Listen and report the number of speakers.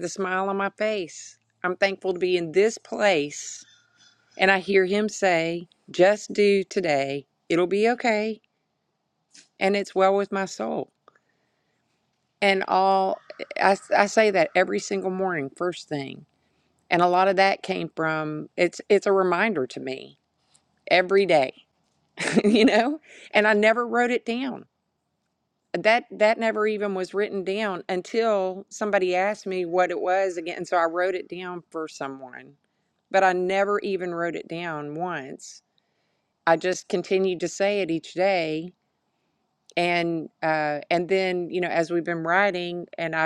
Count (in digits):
1